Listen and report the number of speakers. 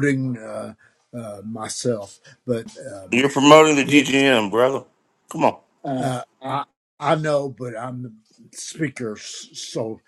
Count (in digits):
2